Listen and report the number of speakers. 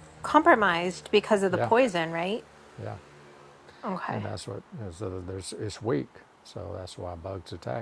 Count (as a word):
two